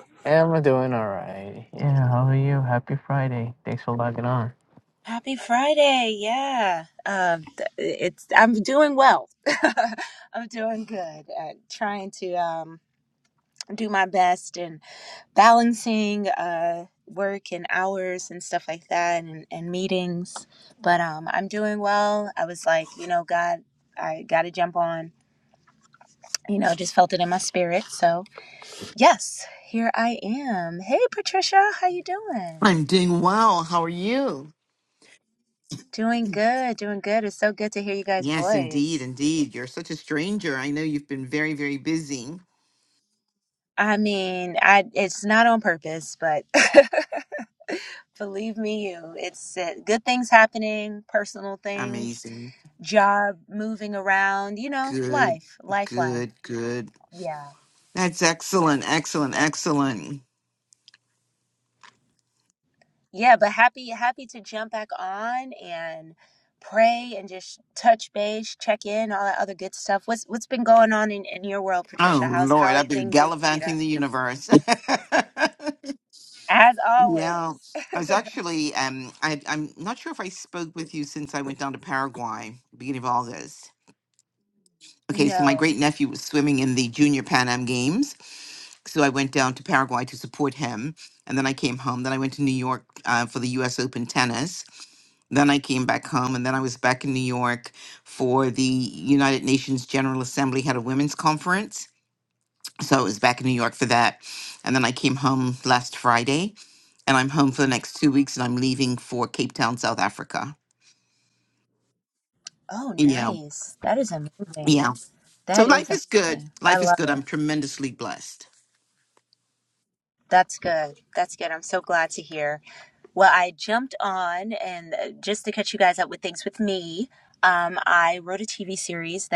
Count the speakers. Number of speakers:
3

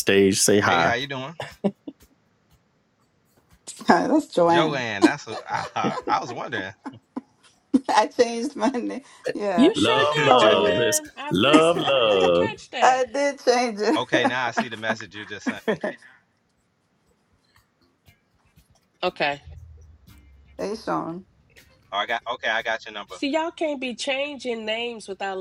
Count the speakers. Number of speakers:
4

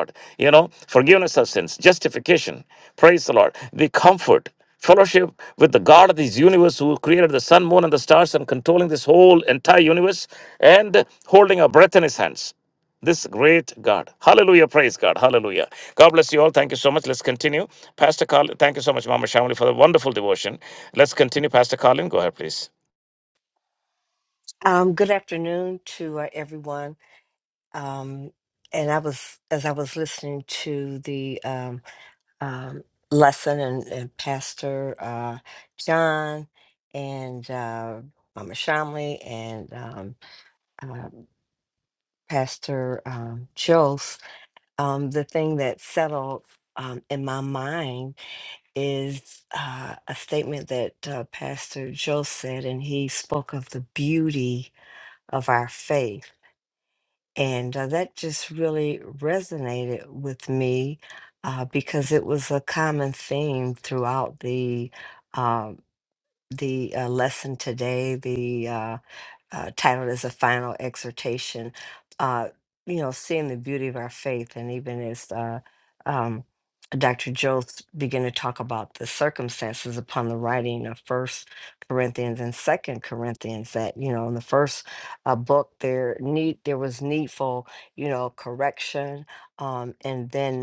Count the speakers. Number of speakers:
2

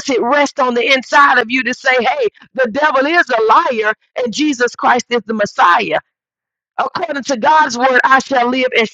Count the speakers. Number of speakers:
1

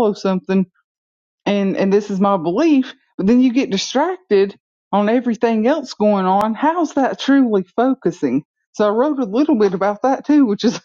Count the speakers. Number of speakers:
1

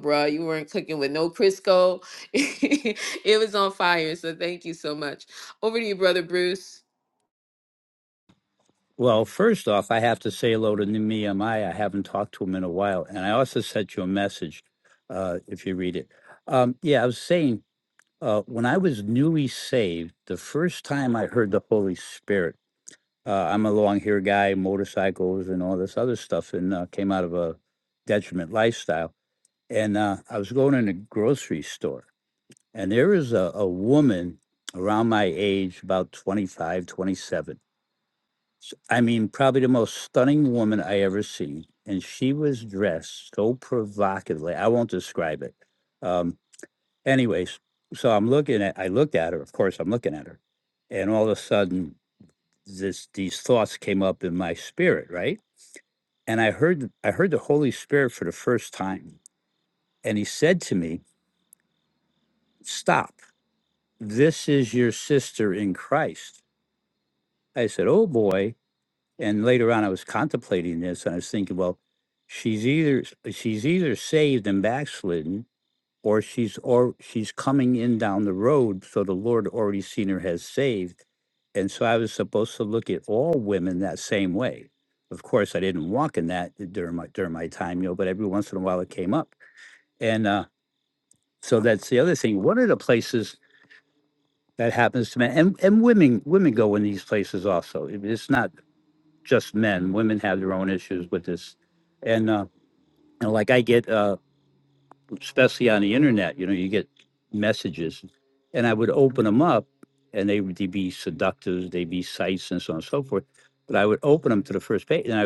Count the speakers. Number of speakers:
2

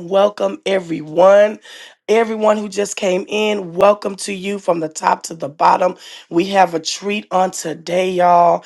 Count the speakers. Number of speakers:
1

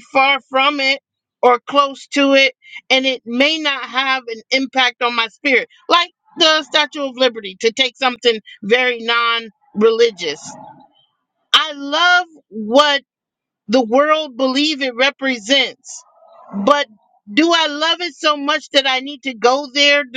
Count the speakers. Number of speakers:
1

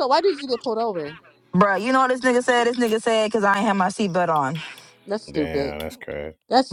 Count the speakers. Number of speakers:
3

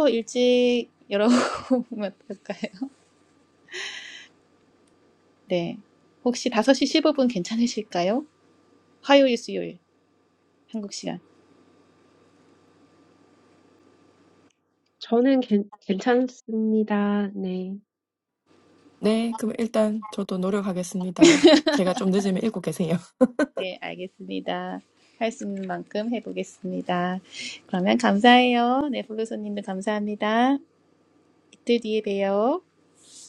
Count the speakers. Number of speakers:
3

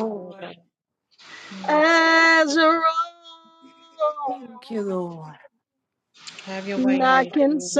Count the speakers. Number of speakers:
3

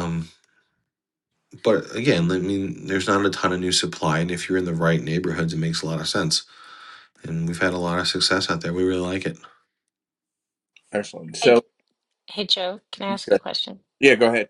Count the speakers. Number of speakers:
3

